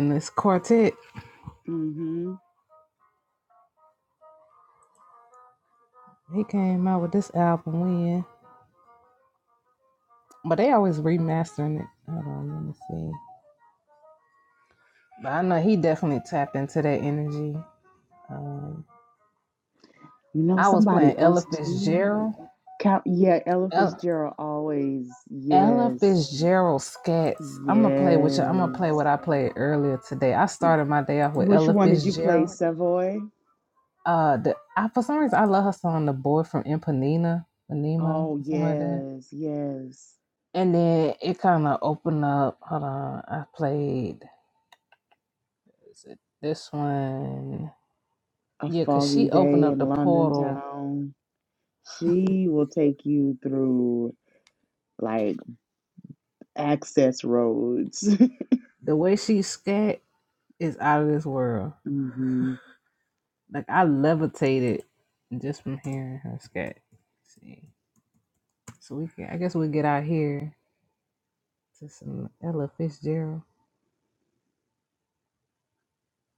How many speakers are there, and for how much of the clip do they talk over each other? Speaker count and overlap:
2, about 10%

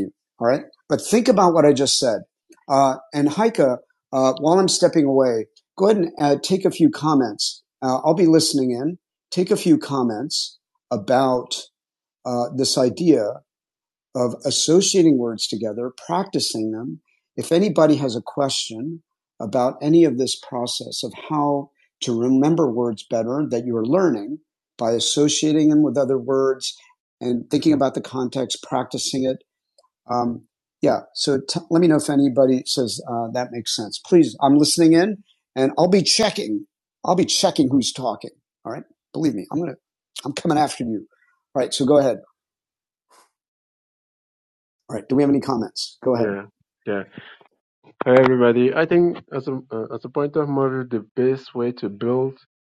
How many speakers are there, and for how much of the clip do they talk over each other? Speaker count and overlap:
2, under 1%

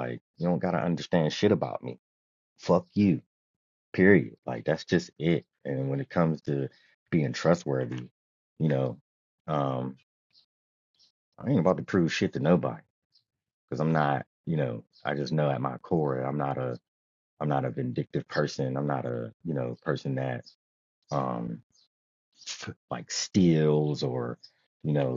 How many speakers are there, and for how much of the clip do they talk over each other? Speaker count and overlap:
1, no overlap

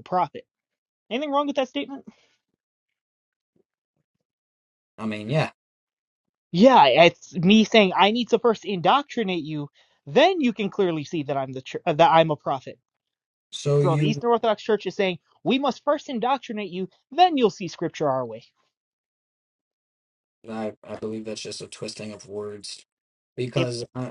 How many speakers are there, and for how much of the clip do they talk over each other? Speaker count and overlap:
2, about 2%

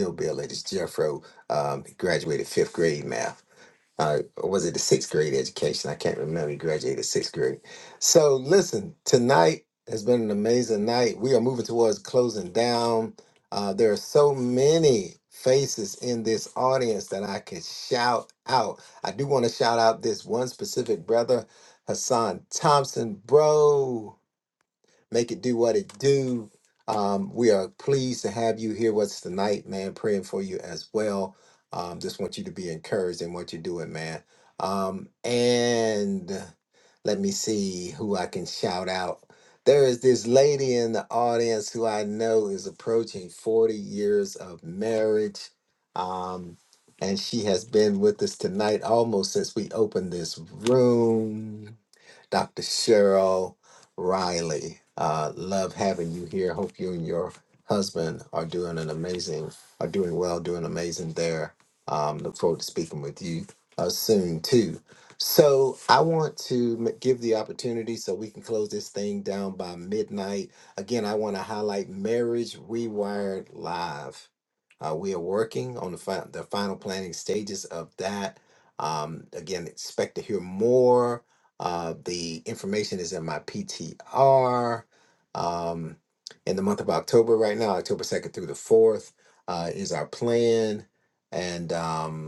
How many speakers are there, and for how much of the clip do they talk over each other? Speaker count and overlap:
1, no overlap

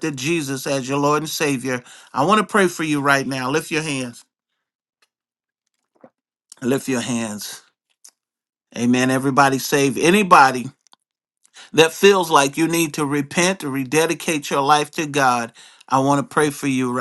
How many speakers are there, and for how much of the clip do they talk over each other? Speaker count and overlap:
1, no overlap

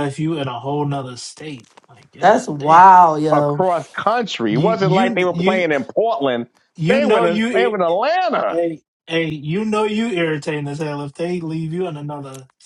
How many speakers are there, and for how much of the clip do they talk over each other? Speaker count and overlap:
3, about 24%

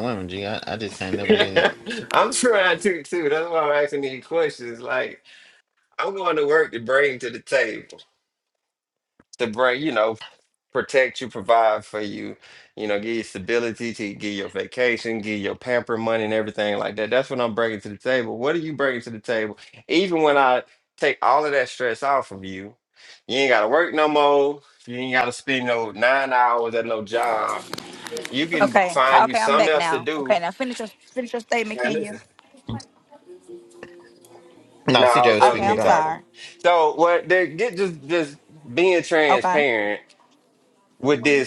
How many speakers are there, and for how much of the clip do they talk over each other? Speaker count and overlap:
3, about 9%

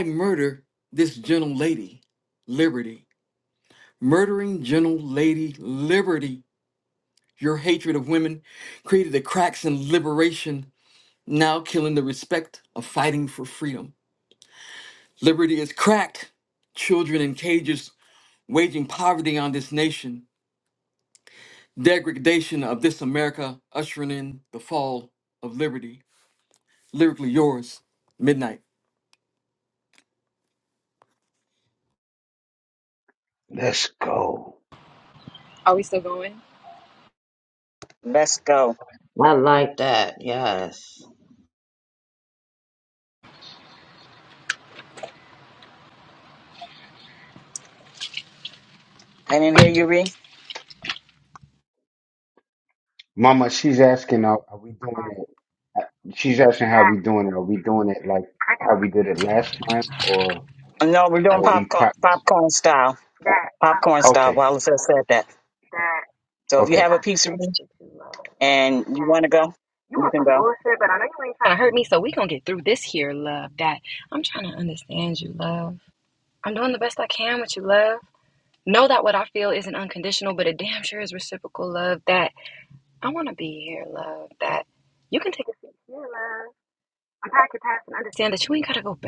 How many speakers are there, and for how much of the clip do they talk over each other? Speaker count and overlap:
5, about 4%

